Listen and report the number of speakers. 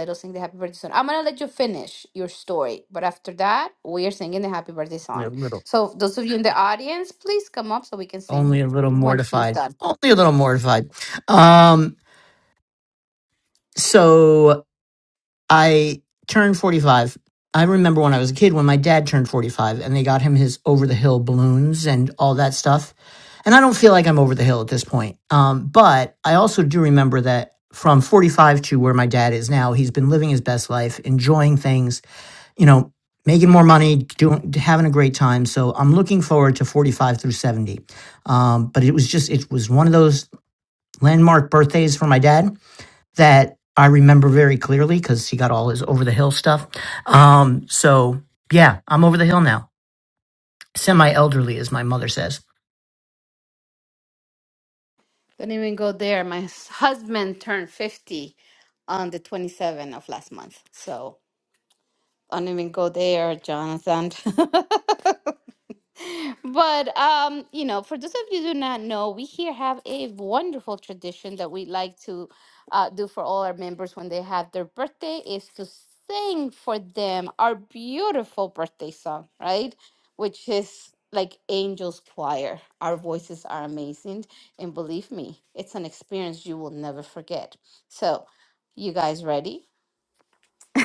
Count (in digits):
2